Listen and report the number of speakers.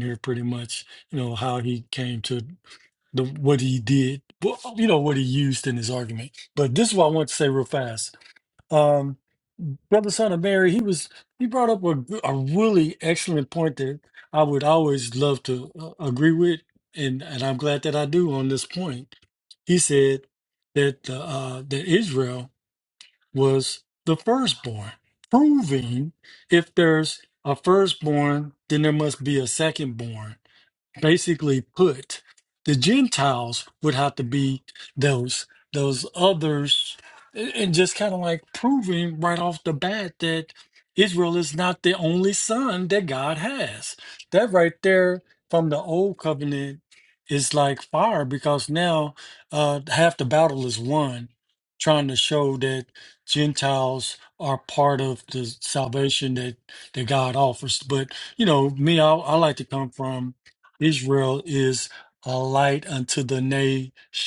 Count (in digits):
1